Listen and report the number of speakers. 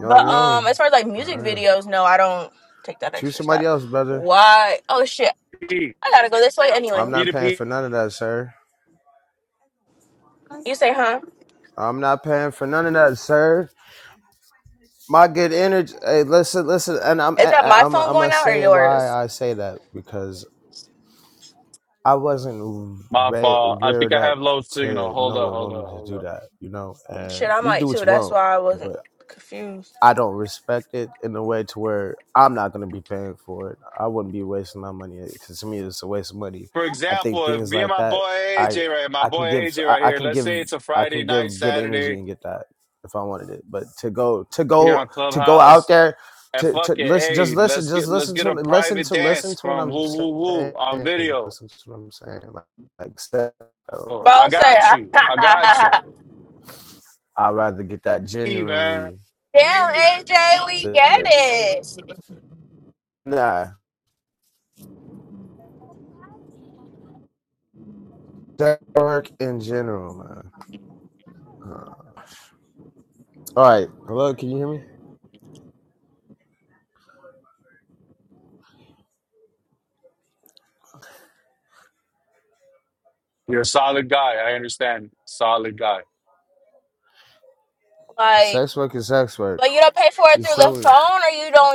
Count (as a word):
three